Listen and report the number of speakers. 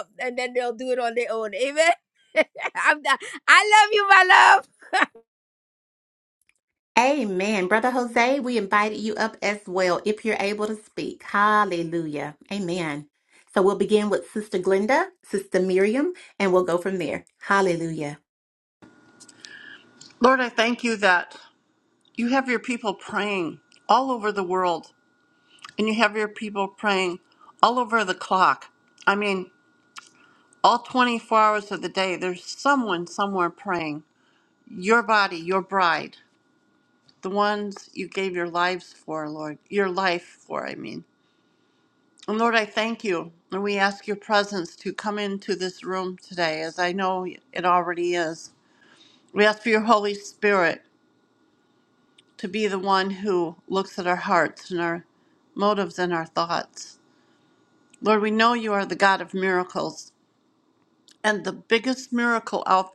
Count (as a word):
three